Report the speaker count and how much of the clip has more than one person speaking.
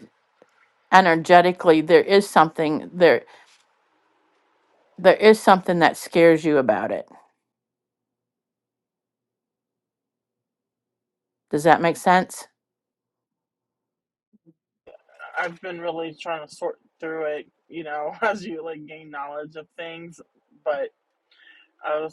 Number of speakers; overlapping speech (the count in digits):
2, no overlap